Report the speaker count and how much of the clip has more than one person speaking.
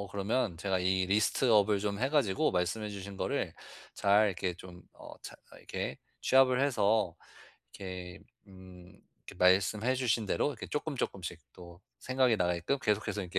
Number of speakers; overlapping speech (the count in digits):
1, no overlap